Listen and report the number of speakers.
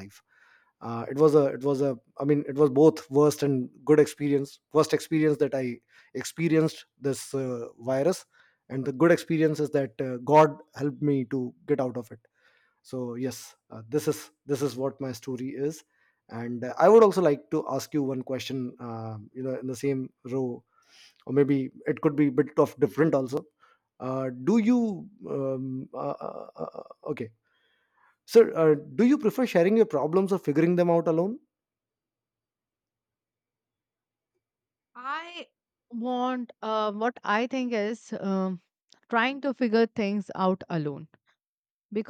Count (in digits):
2